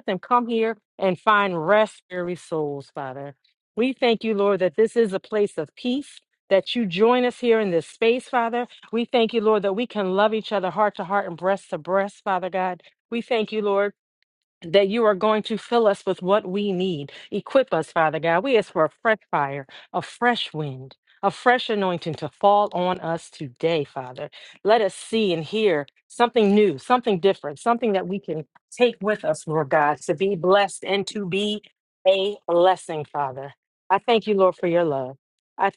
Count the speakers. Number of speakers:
1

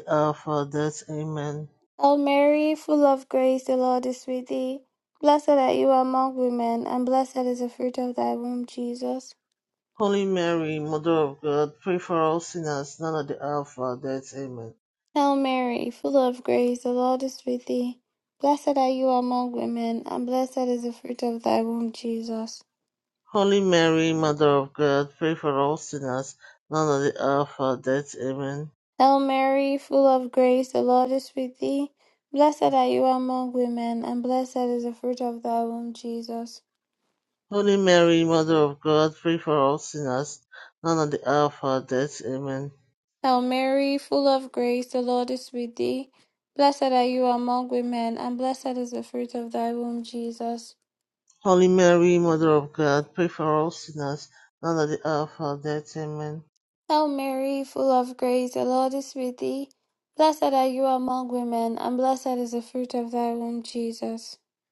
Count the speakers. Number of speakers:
2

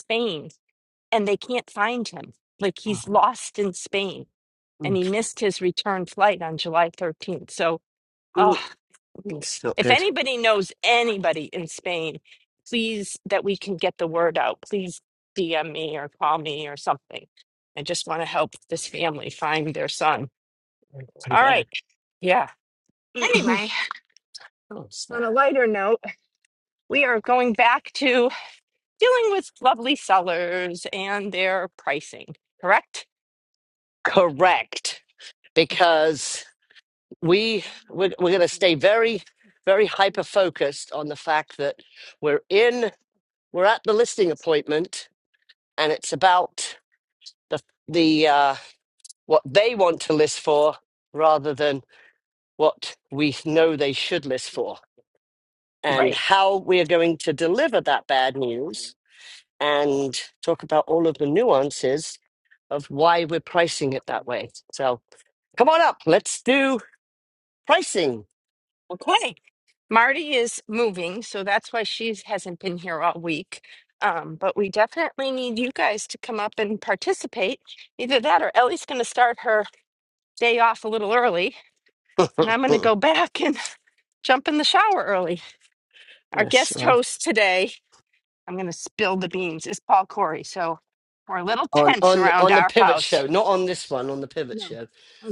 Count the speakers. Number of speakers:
2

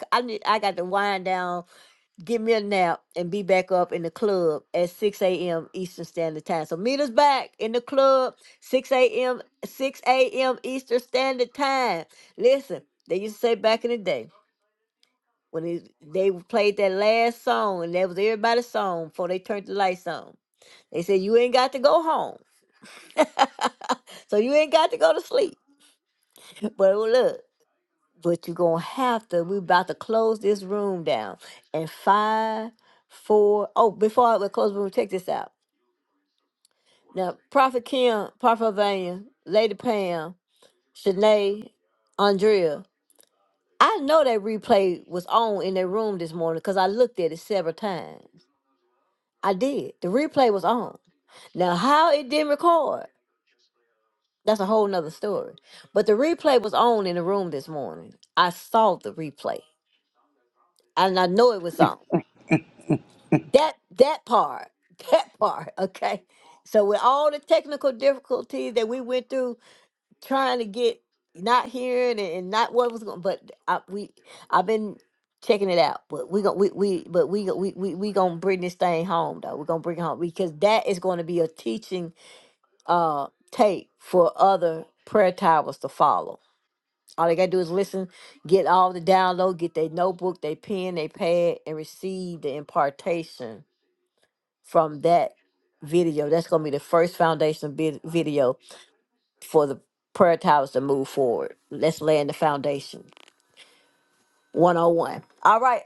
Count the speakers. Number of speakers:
1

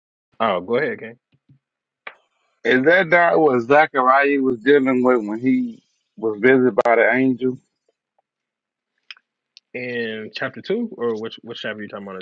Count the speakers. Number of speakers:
2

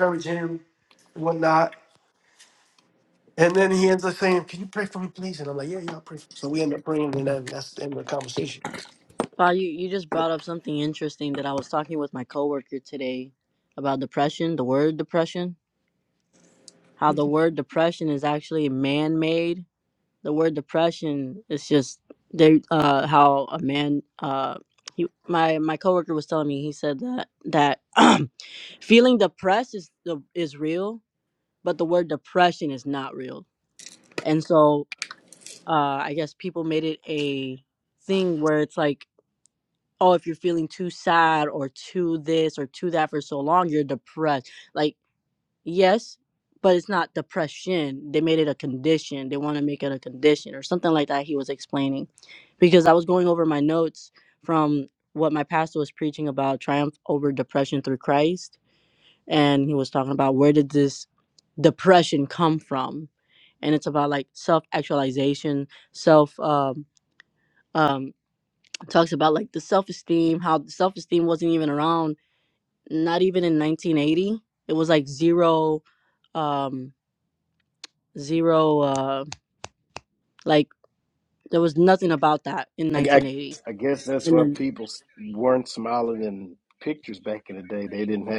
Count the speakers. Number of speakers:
3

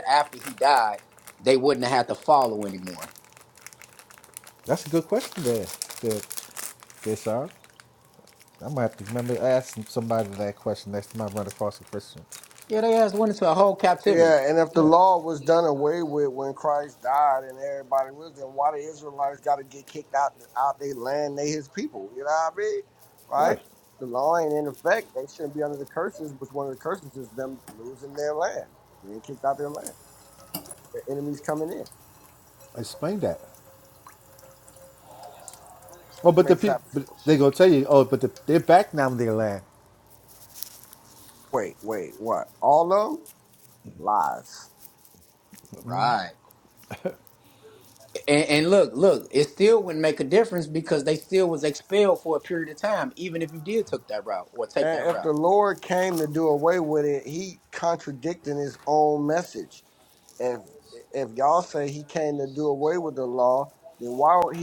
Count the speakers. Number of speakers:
3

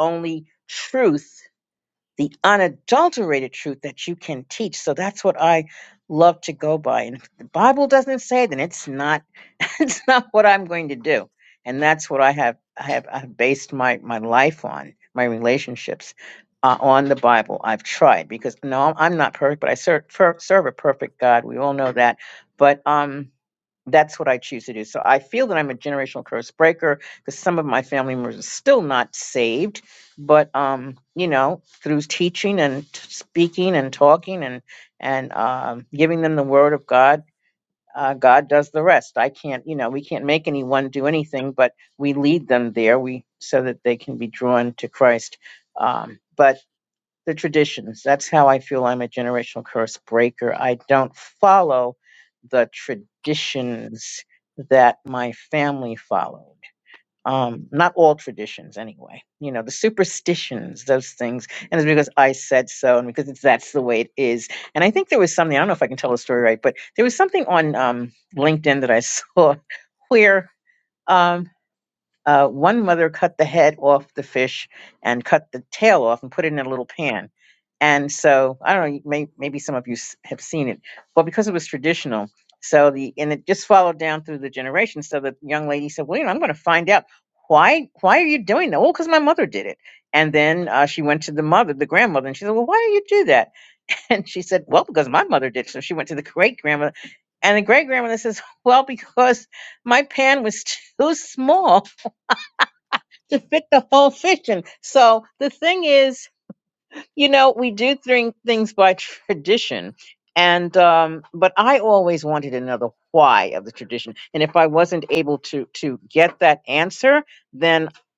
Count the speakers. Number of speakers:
1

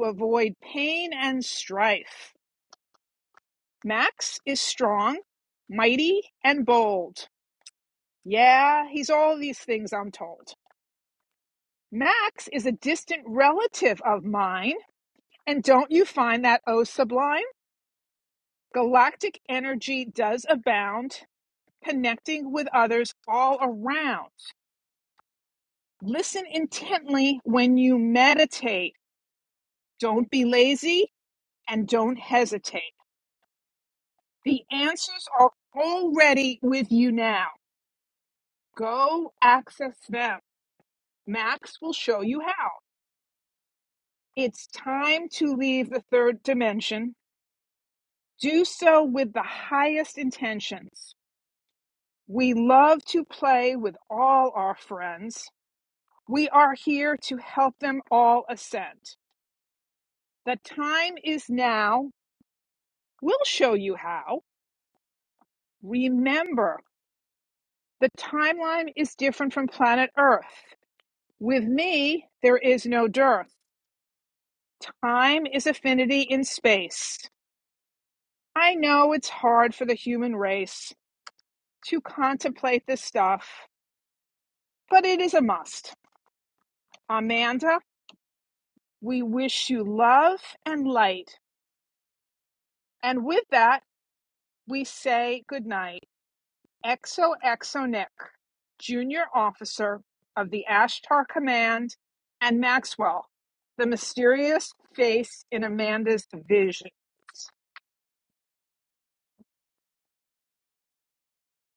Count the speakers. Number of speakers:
1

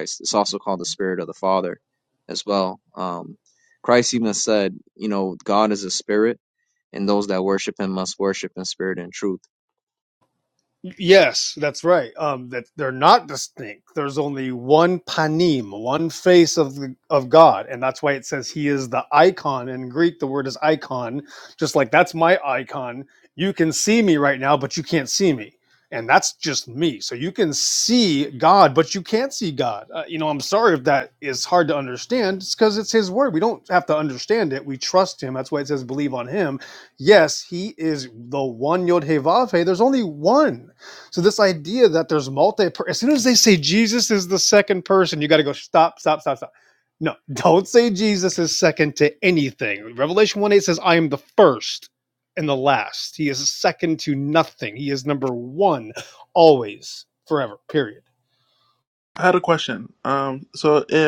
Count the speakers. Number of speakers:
3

